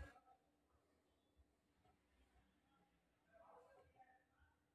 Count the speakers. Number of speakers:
0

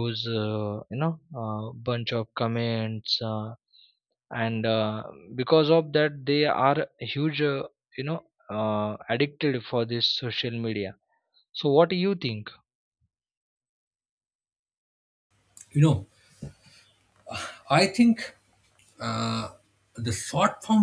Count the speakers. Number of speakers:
2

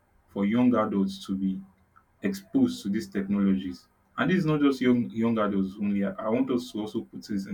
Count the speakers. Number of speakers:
1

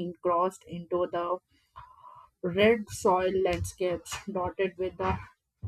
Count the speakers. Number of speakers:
1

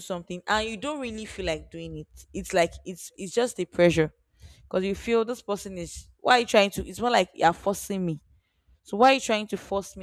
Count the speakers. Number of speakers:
1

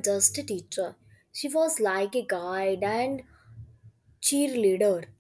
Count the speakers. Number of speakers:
1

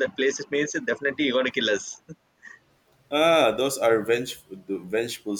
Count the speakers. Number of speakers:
2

